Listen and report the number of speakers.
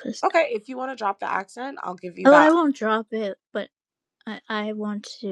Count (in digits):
2